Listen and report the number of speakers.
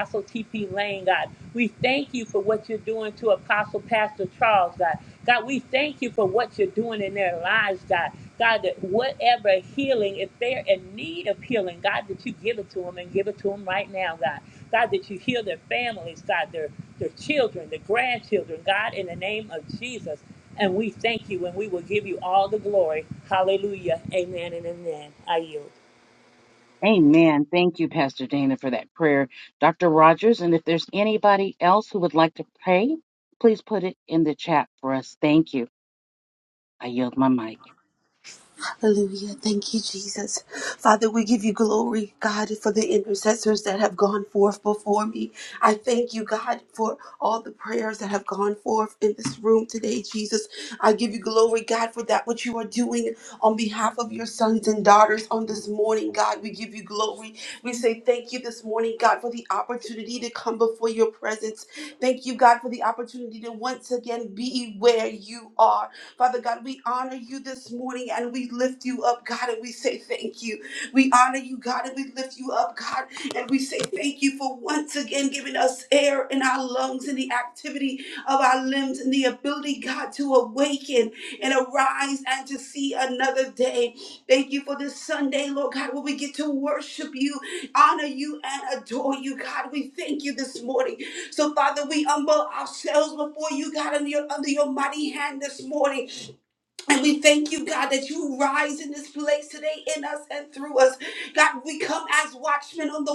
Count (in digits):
3